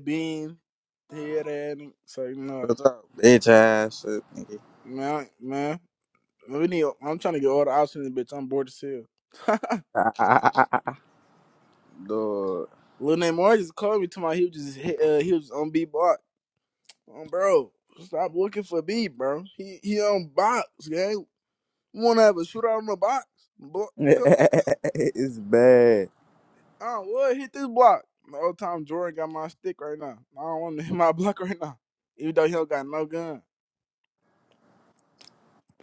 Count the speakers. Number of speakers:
two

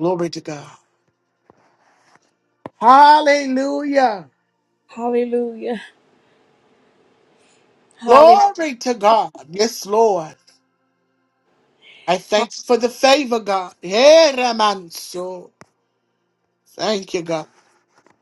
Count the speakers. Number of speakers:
two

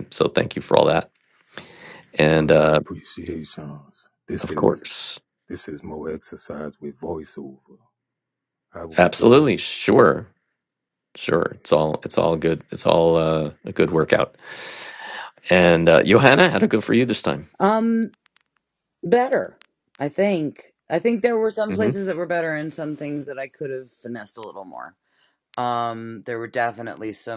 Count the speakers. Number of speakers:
three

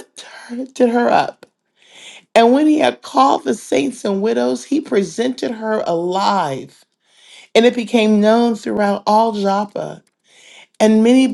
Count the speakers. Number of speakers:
one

